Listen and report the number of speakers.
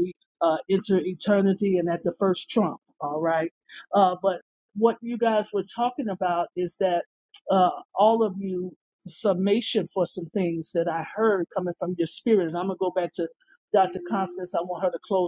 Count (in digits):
1